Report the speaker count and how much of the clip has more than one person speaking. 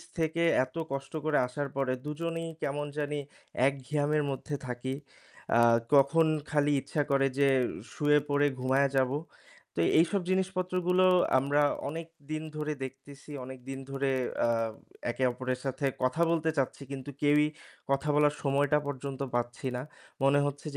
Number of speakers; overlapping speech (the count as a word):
one, no overlap